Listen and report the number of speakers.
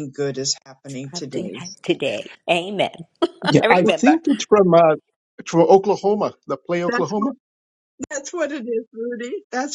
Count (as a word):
three